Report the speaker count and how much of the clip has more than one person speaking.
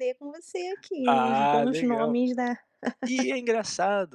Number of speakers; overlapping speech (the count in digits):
2, about 27%